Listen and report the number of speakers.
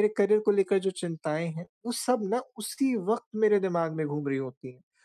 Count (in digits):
1